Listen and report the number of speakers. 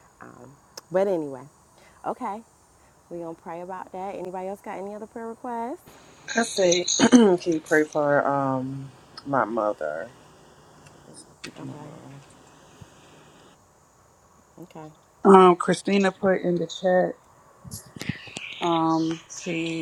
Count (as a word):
three